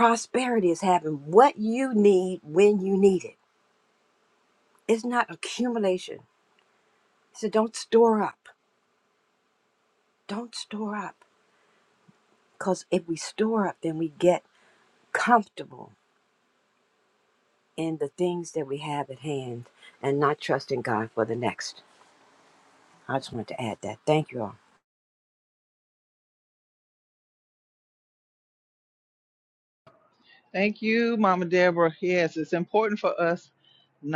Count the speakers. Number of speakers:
2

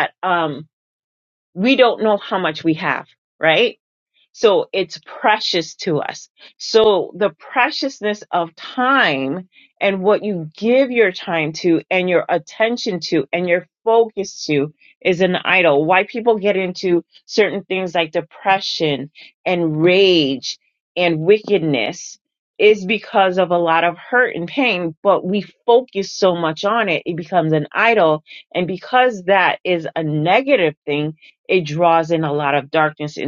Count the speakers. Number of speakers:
1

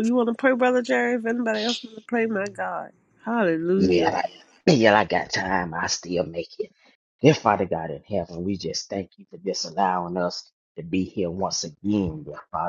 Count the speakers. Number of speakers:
2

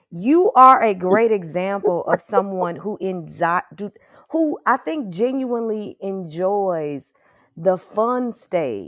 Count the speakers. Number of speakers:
1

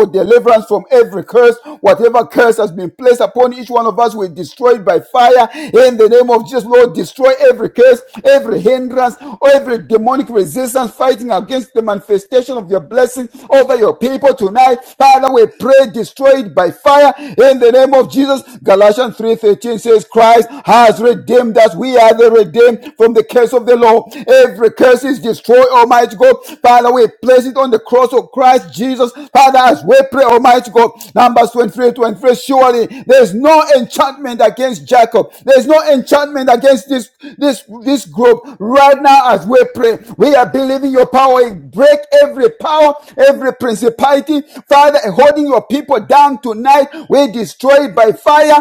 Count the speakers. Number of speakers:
1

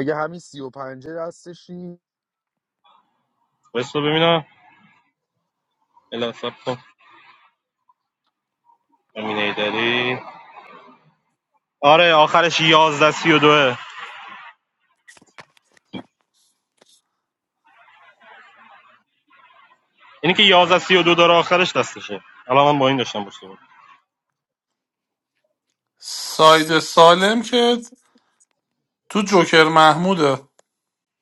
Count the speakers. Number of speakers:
3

